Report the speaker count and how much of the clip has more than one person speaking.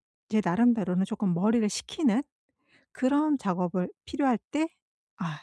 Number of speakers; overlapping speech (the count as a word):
one, no overlap